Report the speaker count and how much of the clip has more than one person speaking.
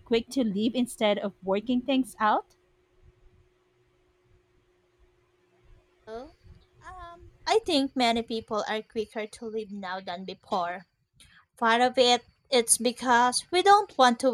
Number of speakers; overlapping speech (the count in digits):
2, no overlap